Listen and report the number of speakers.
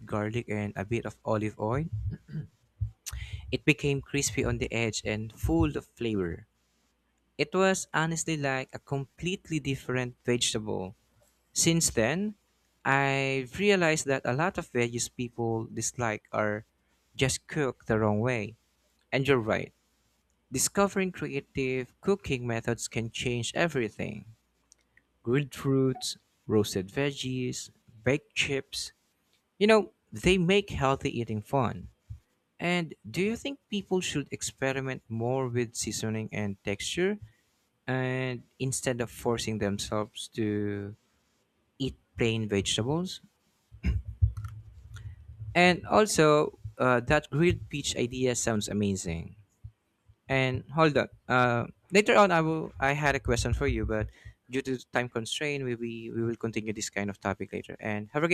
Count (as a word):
one